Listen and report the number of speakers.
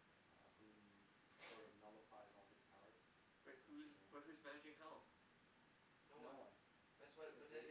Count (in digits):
3